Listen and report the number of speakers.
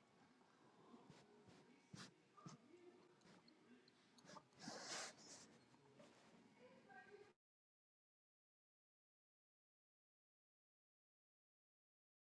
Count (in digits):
0